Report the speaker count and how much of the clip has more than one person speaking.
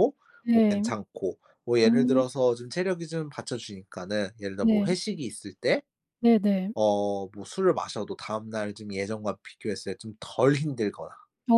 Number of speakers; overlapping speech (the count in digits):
2, about 9%